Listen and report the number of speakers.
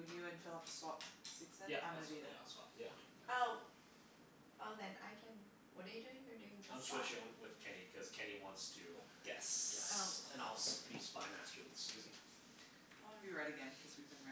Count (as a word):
four